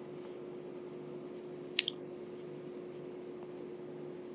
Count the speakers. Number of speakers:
0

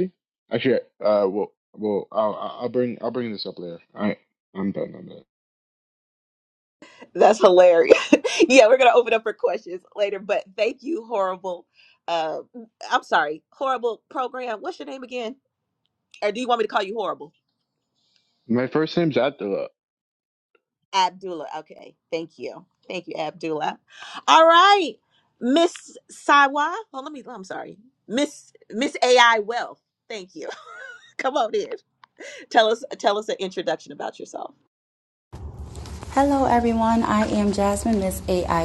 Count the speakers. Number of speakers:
3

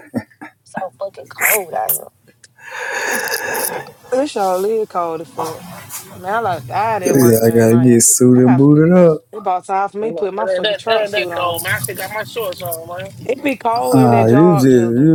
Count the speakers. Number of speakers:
4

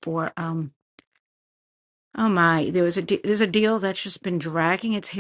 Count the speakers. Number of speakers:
1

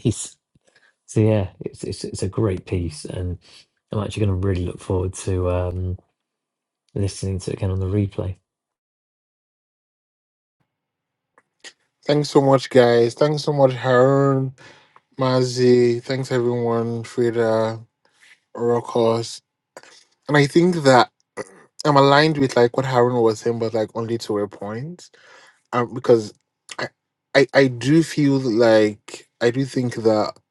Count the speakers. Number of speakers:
2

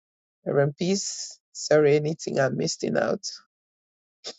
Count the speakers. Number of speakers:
1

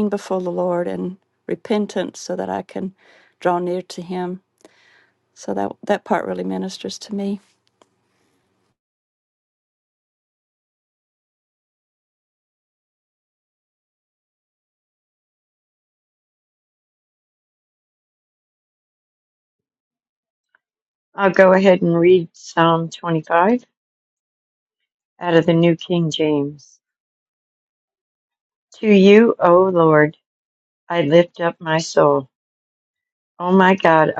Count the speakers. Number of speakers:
2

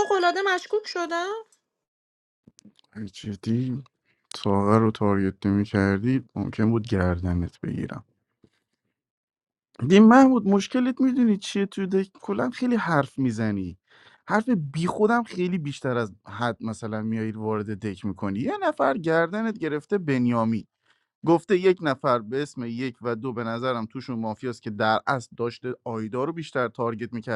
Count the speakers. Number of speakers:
2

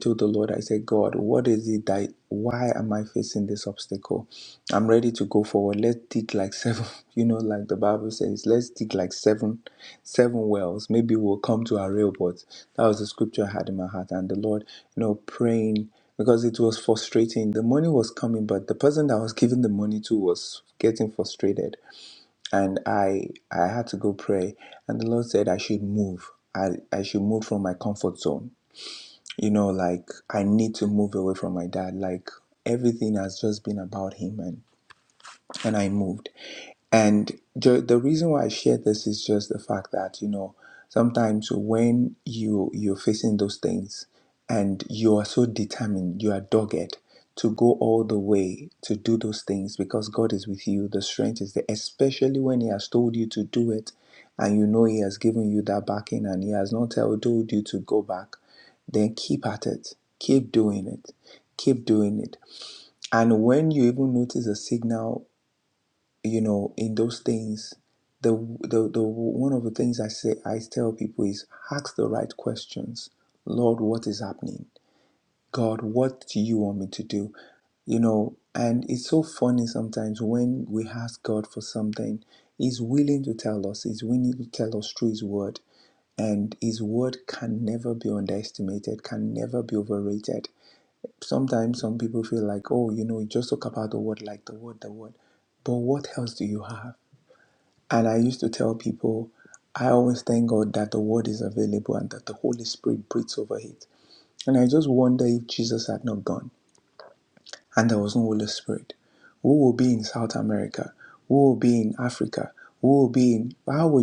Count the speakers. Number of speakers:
1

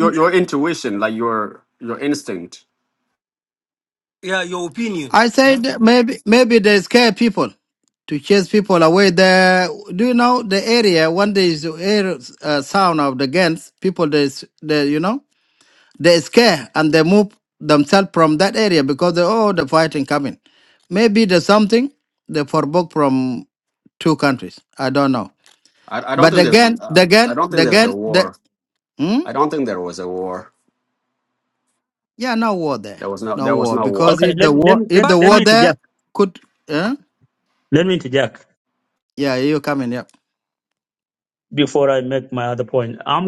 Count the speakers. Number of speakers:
4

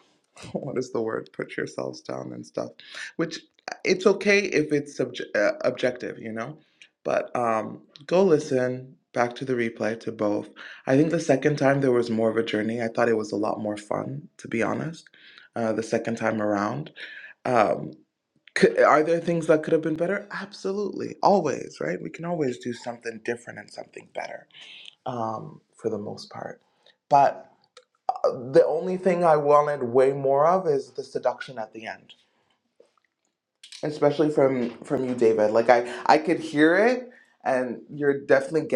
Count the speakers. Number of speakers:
1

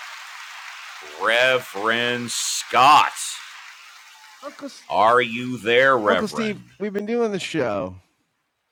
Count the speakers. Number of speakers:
2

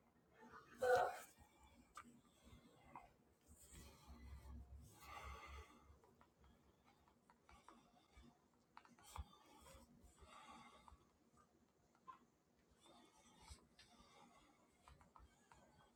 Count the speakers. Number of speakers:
0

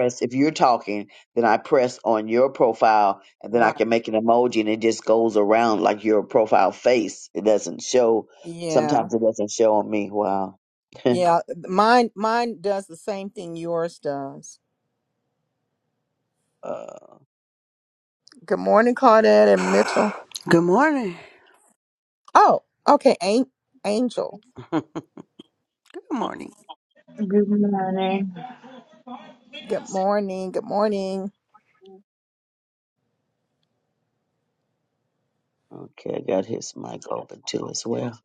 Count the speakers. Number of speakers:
4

